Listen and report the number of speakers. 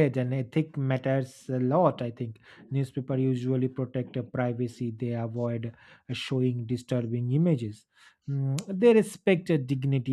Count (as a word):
one